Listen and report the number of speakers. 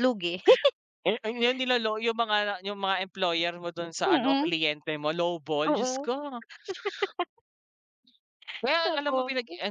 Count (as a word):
two